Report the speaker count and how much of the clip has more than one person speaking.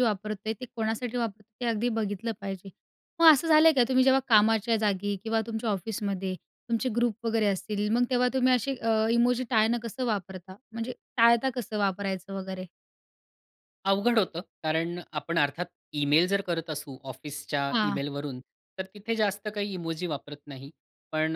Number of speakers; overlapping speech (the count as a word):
two, about 1%